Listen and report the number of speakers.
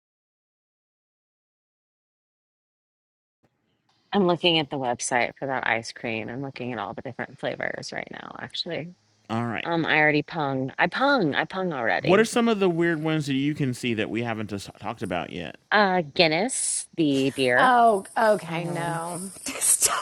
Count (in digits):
3